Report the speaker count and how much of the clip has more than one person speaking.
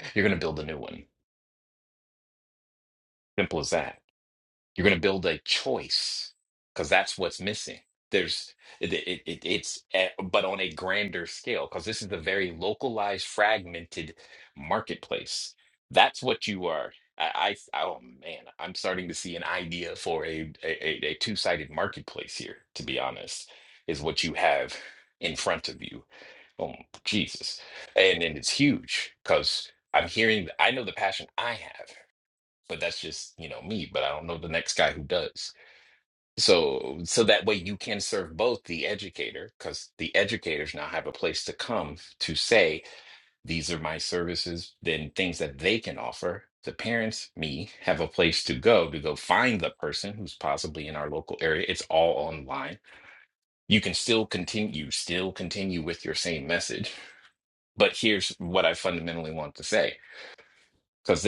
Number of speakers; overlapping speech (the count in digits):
1, no overlap